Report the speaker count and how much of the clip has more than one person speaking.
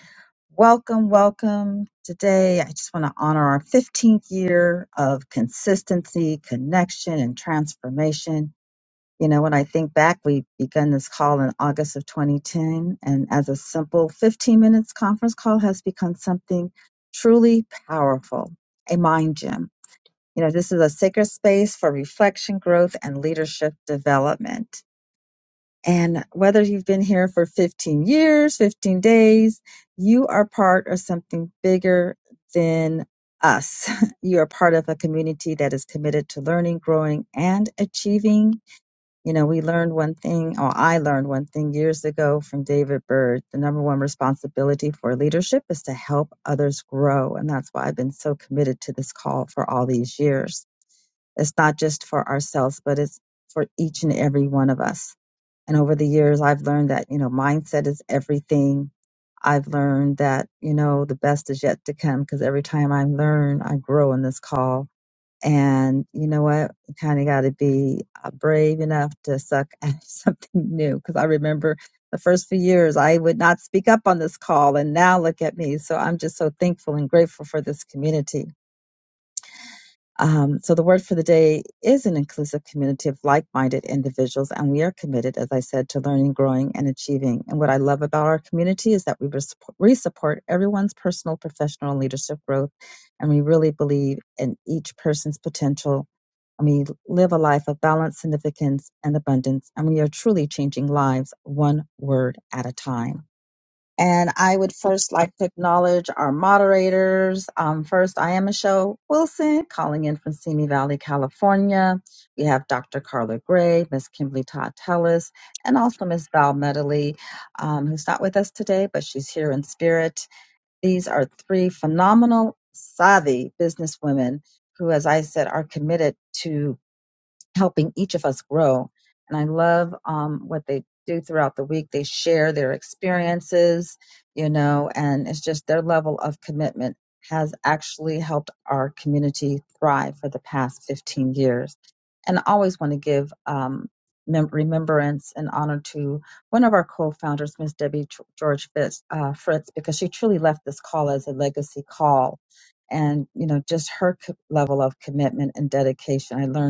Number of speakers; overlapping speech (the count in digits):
1, no overlap